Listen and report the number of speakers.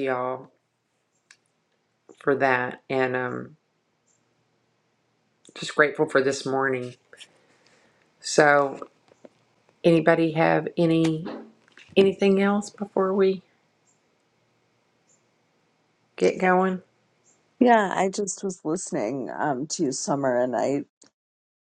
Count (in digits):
2